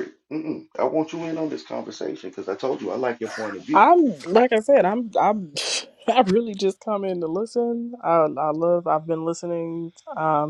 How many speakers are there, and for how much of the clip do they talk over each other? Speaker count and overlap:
two, about 1%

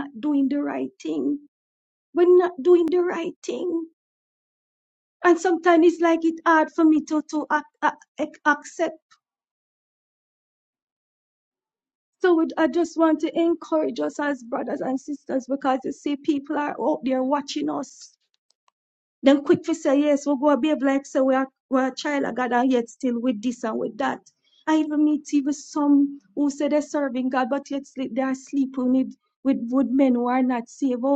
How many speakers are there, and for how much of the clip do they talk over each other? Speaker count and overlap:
one, no overlap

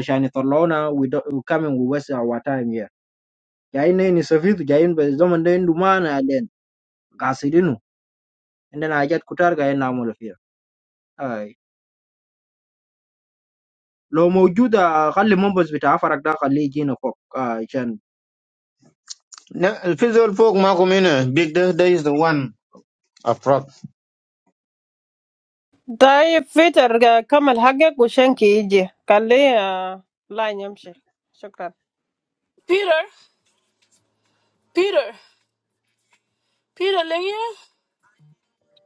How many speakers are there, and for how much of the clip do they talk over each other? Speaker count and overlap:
four, no overlap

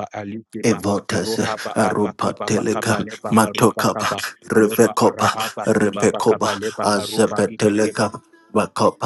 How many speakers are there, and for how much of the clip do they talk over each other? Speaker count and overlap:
two, about 72%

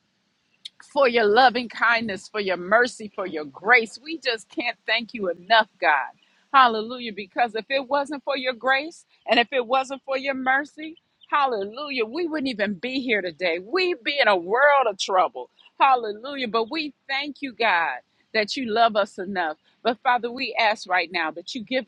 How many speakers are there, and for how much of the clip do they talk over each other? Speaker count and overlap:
one, no overlap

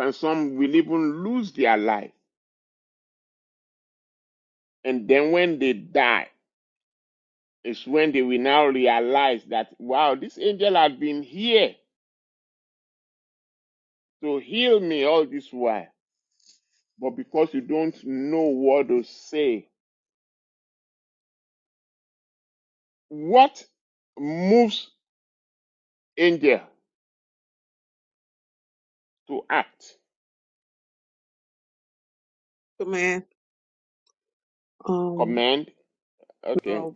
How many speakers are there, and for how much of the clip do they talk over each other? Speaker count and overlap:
two, about 1%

